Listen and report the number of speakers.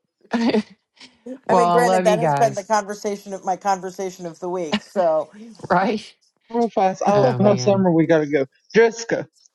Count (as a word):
three